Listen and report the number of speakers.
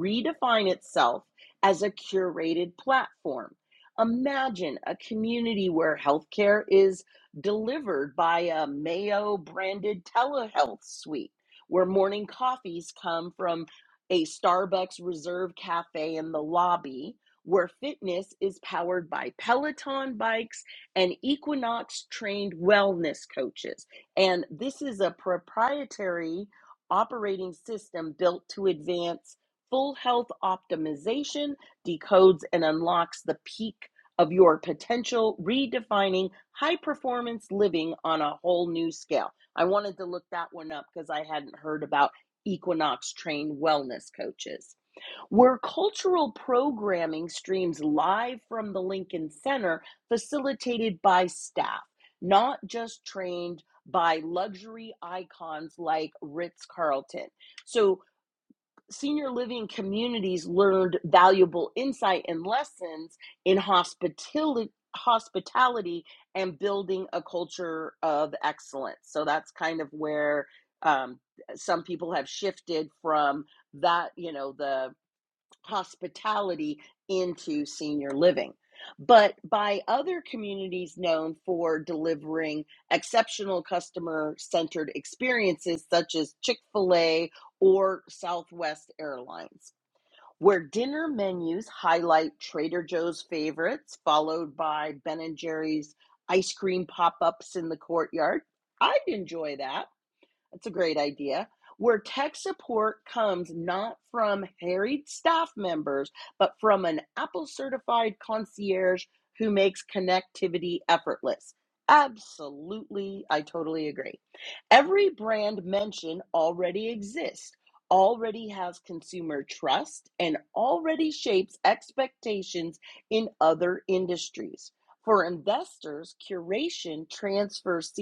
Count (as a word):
one